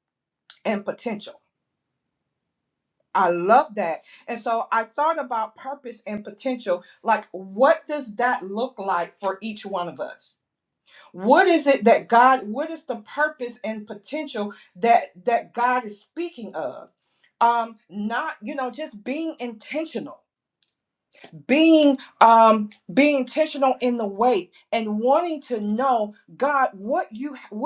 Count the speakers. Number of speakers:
1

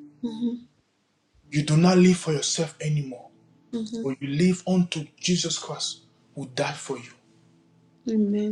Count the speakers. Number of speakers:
2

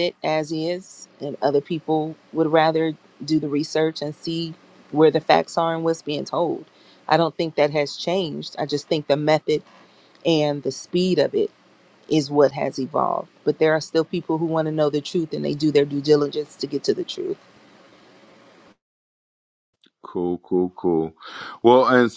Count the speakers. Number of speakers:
2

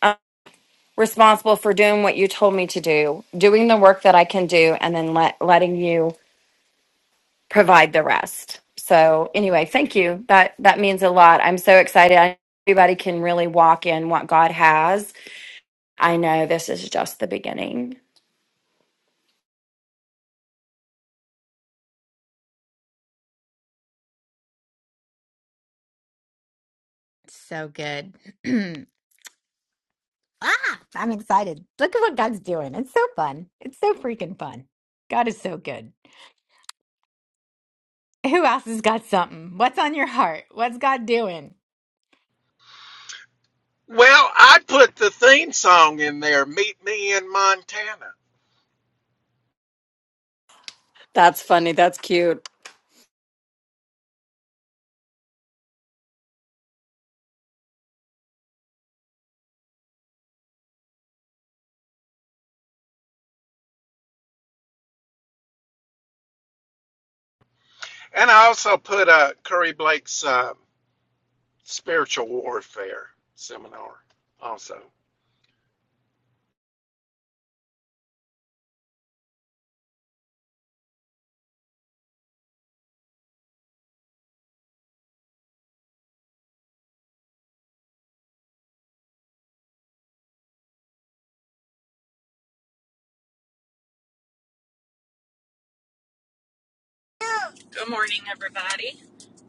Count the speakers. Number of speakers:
4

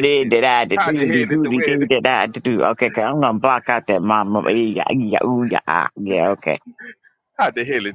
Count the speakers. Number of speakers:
2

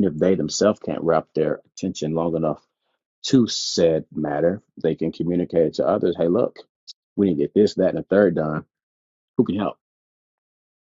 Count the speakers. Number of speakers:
1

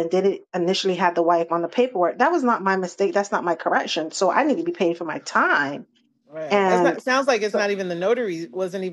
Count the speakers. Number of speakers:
2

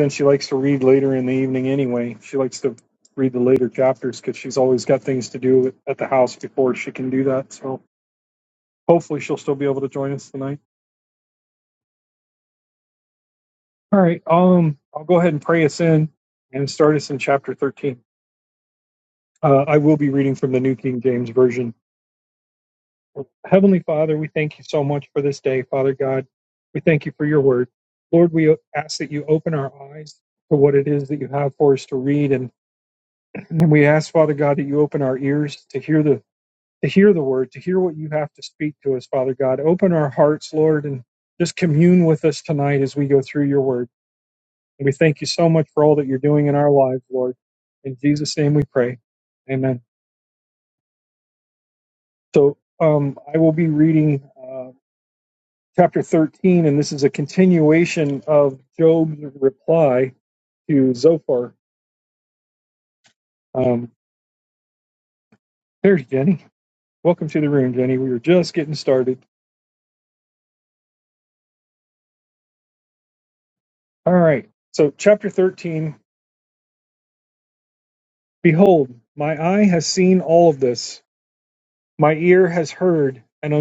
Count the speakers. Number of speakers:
1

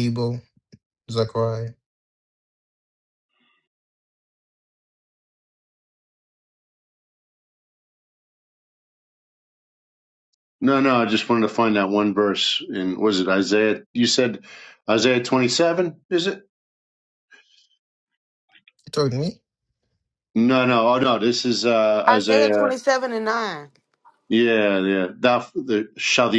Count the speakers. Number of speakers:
3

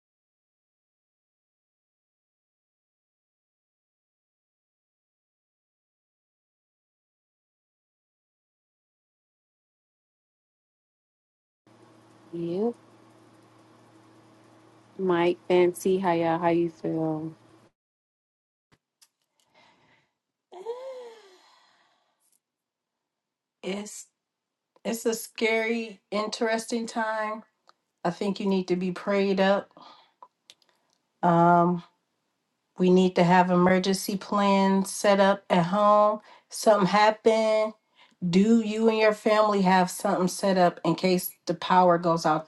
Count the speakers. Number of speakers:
2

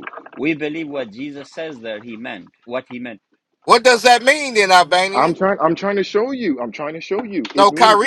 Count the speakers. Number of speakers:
3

